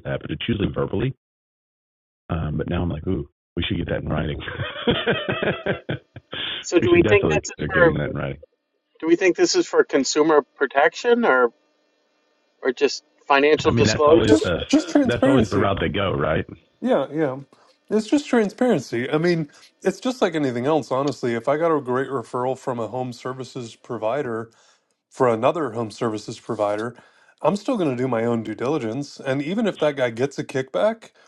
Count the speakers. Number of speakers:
3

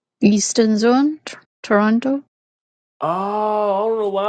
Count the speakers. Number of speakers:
2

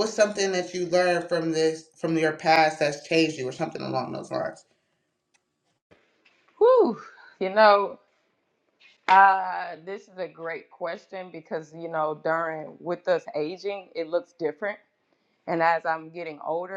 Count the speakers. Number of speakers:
2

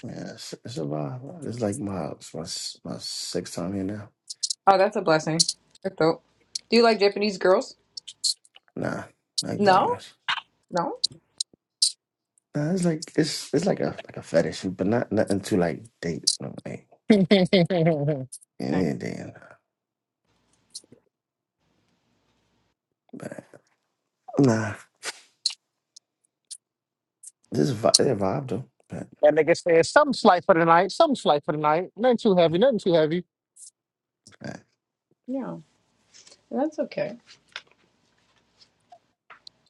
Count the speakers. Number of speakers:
3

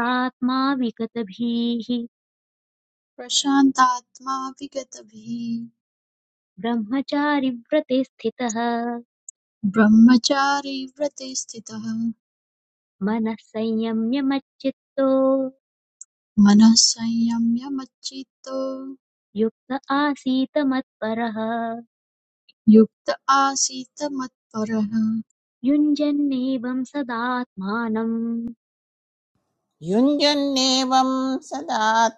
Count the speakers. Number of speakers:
3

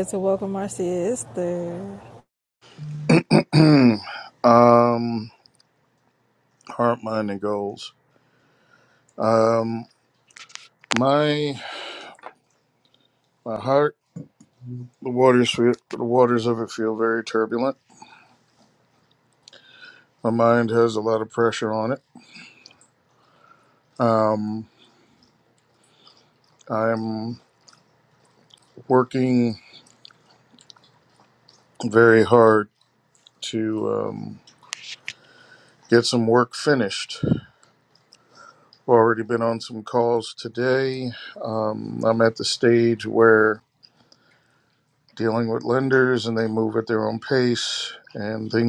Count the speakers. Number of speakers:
2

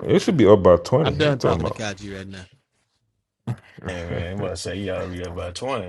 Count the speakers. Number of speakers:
3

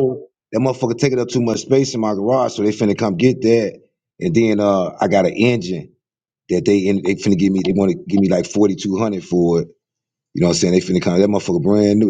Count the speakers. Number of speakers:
1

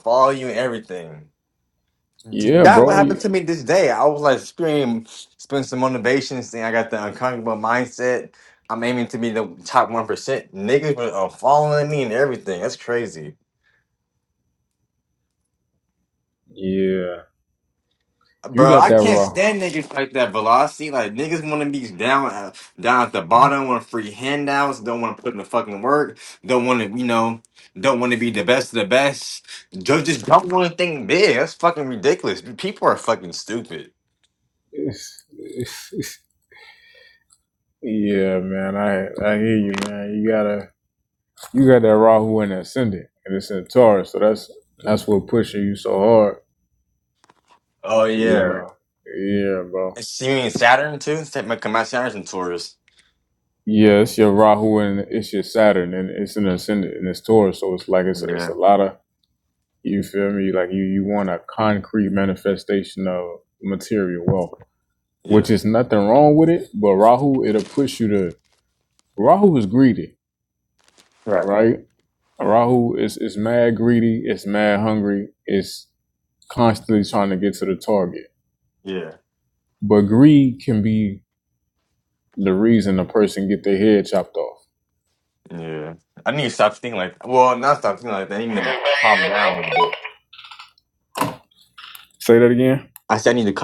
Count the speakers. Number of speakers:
2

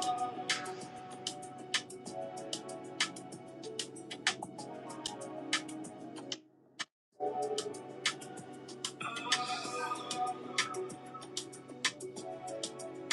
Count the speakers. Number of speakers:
0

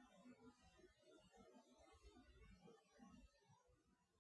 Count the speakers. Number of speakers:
0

